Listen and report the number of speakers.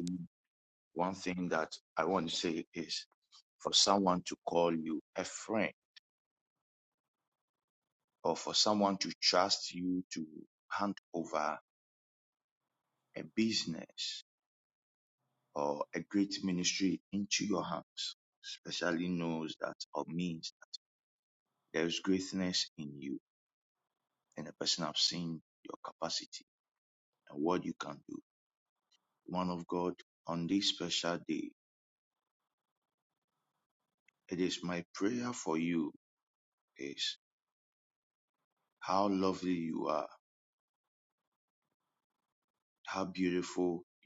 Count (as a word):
one